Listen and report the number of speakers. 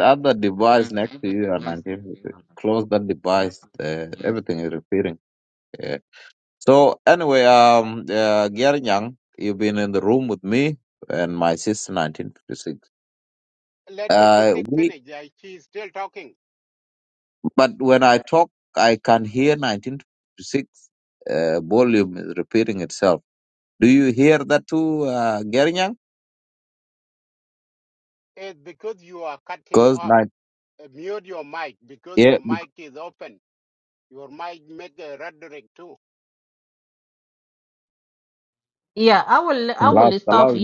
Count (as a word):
three